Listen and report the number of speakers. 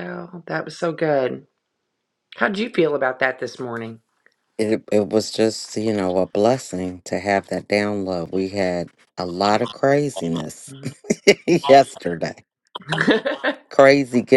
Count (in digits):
2